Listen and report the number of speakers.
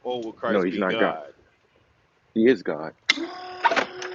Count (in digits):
2